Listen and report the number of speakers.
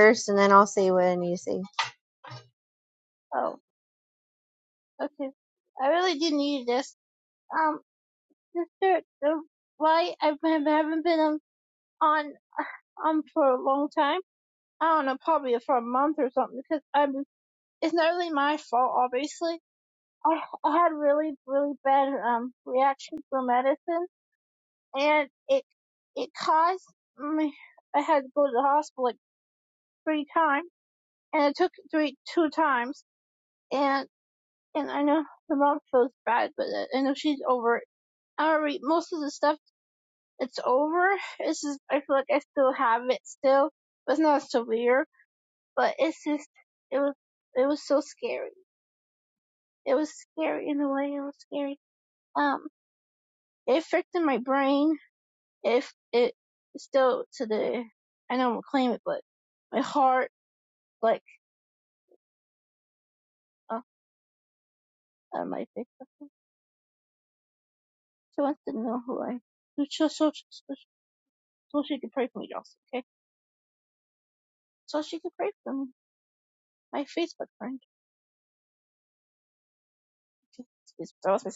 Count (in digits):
2